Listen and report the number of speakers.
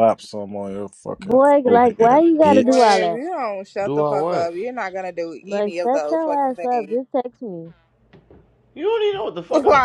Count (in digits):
4